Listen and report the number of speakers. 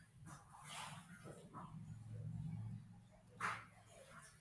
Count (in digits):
0